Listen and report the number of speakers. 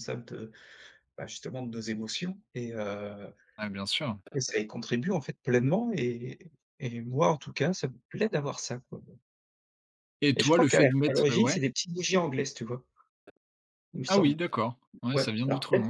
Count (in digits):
2